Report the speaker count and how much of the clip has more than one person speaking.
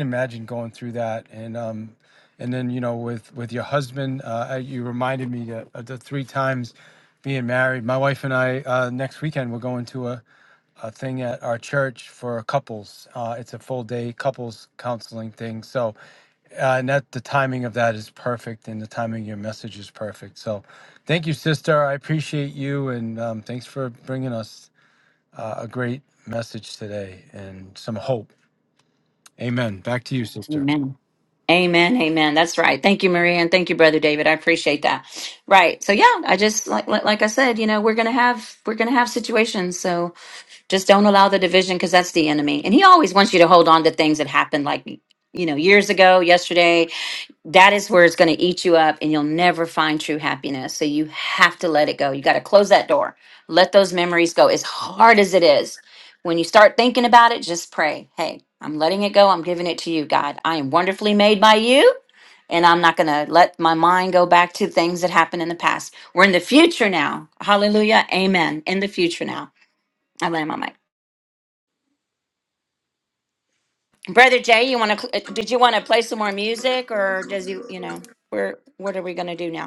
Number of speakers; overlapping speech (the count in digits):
2, under 1%